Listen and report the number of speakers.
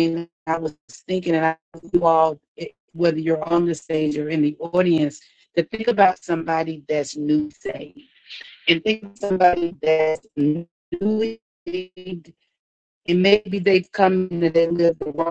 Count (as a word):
one